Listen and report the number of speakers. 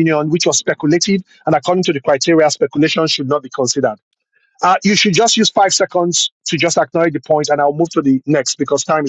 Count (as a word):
one